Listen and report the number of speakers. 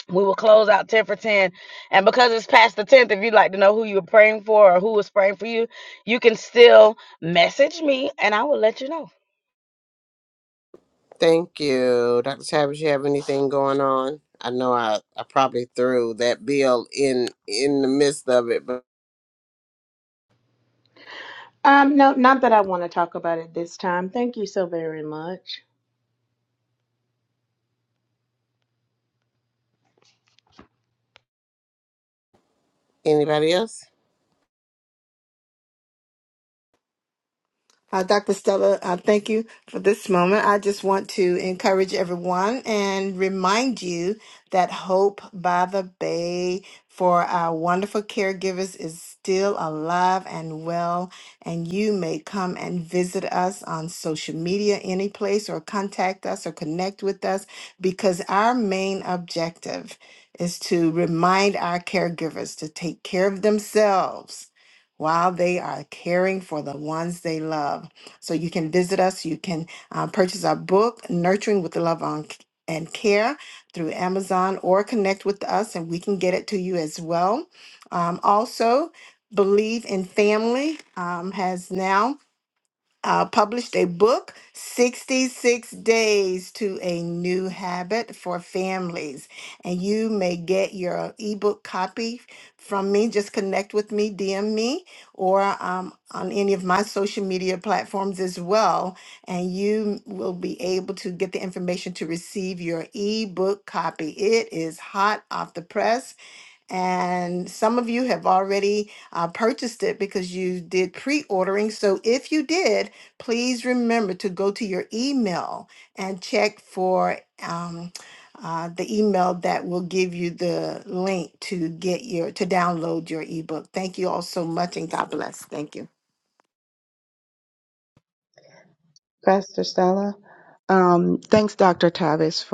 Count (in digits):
5